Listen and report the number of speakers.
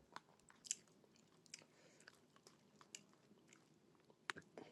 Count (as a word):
zero